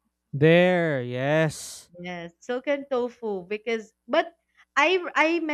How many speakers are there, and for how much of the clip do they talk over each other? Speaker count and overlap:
2, no overlap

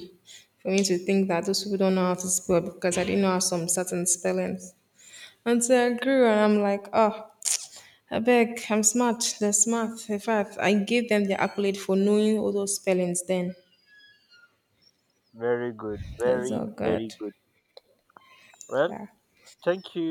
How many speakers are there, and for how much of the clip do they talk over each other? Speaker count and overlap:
2, about 5%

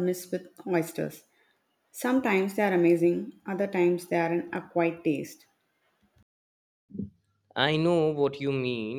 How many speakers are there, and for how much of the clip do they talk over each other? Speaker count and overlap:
2, no overlap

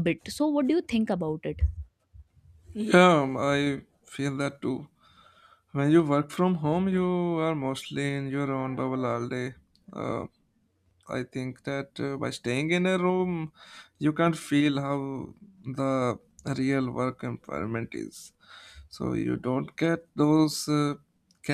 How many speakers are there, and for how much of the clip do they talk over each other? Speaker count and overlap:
2, no overlap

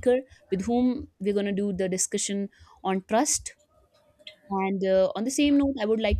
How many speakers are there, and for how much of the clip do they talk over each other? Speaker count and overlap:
1, no overlap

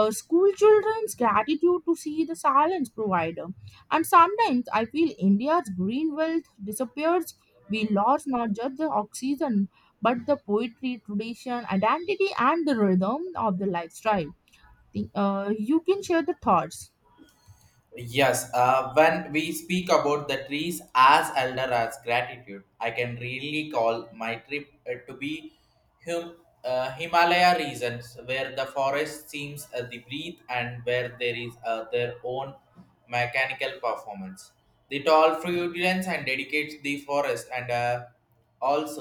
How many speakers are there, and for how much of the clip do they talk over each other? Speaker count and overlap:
2, no overlap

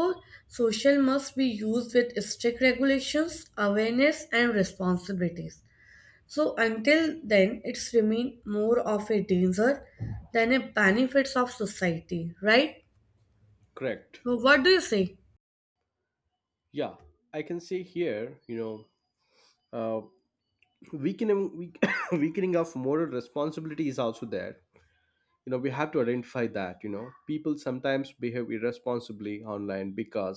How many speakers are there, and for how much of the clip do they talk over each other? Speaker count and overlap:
2, no overlap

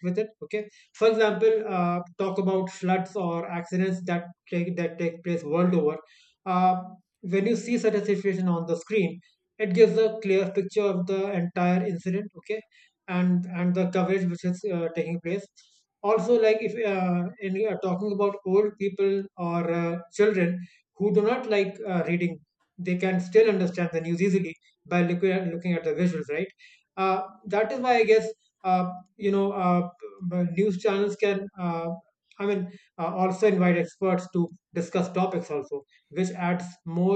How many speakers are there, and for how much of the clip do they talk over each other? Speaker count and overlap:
1, no overlap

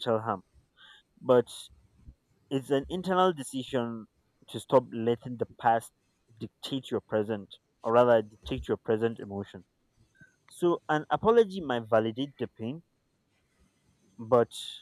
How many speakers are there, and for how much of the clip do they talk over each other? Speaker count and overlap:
1, no overlap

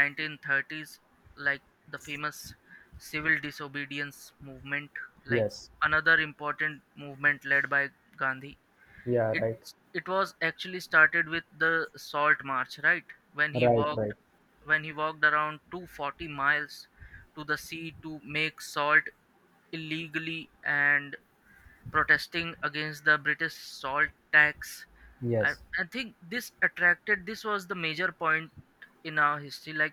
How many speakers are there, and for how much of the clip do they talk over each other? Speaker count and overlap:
2, about 3%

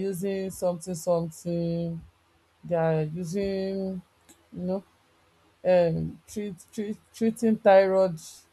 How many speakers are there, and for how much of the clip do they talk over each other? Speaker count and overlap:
1, no overlap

